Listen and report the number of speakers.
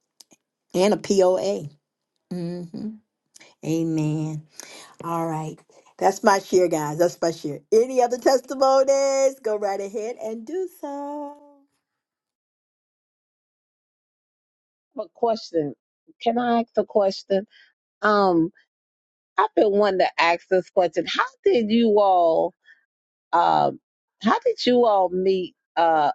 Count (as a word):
two